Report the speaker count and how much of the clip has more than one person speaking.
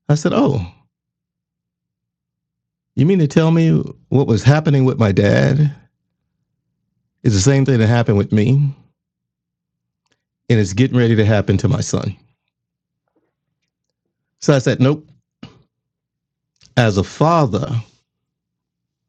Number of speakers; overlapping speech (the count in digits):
1, no overlap